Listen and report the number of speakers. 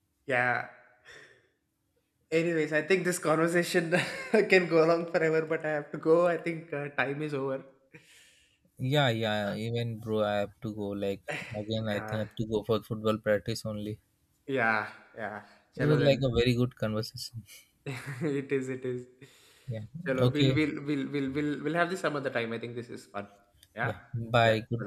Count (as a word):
two